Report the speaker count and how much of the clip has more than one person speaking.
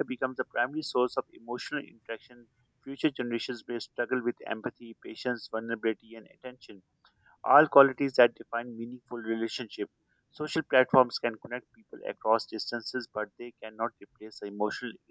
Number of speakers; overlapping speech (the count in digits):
1, no overlap